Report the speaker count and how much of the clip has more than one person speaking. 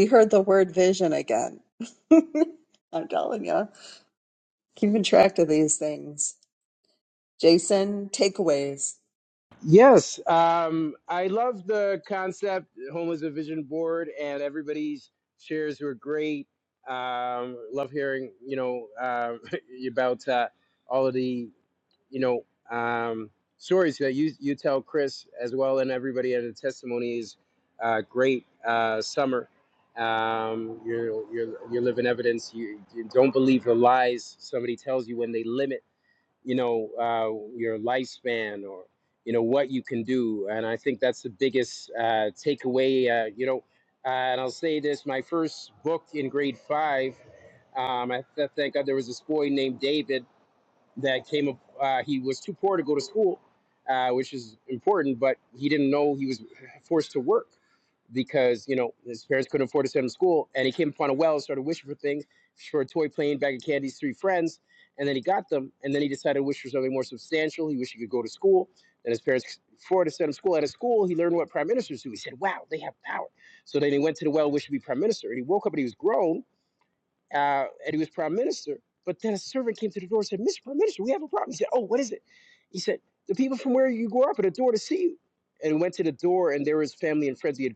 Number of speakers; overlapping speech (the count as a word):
two, no overlap